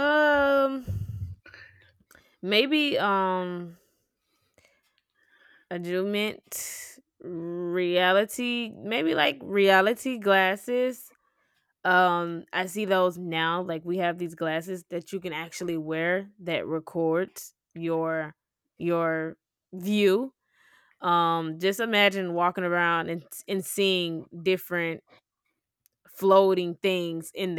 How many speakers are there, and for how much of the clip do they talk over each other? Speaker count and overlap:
1, no overlap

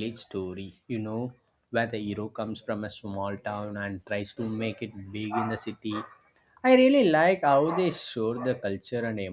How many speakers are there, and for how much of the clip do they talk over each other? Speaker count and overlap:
1, no overlap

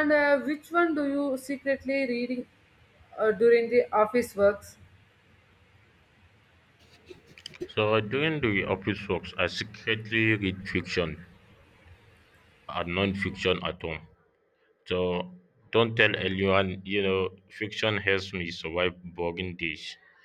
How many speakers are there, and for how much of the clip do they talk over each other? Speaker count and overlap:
2, no overlap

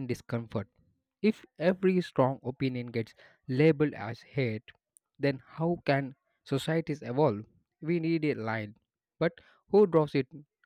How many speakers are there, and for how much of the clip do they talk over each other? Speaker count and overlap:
1, no overlap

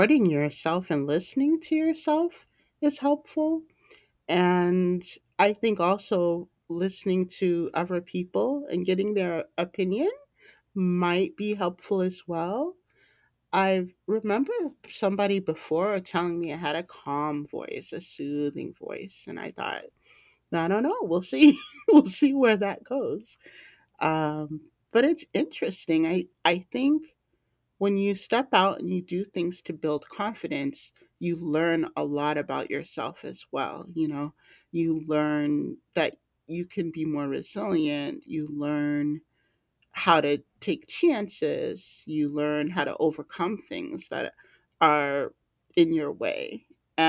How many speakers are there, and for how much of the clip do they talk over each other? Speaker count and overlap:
1, no overlap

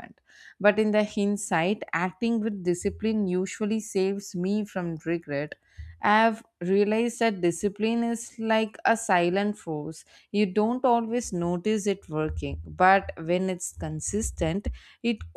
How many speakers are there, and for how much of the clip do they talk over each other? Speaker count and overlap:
1, no overlap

